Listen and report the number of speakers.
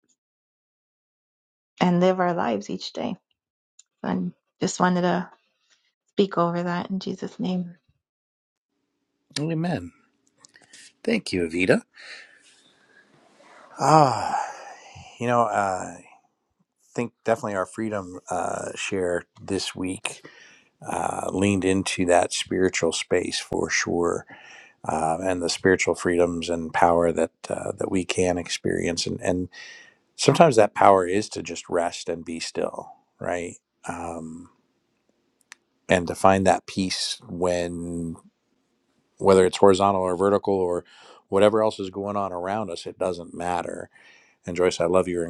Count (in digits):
2